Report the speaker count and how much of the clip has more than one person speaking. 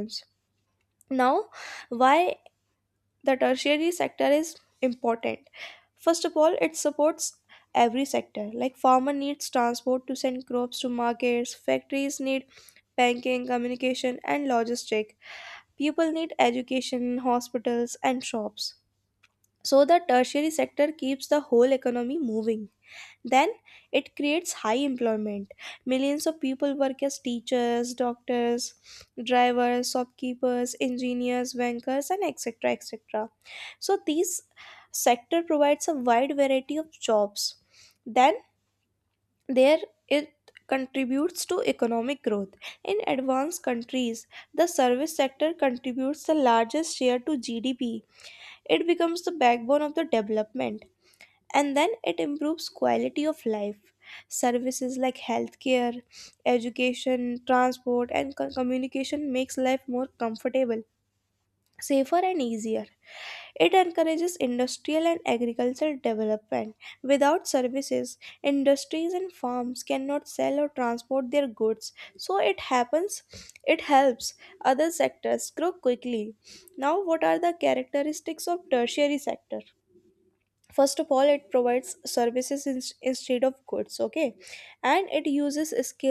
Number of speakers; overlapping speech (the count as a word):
one, no overlap